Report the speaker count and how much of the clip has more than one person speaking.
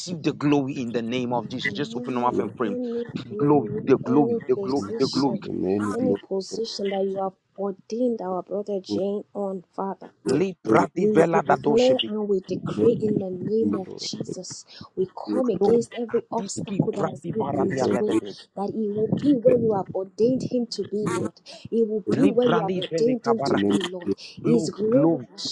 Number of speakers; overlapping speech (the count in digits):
3, about 41%